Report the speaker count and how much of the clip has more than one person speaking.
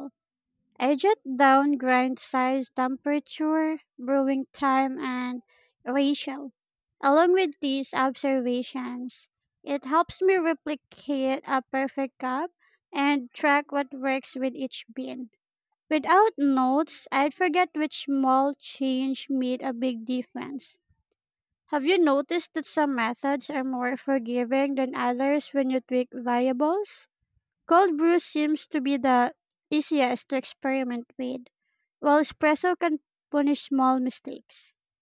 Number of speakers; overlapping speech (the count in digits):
1, no overlap